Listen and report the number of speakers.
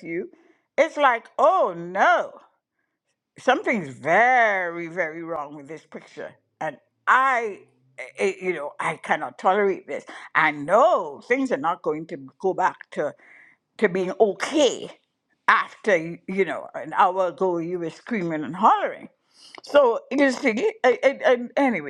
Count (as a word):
one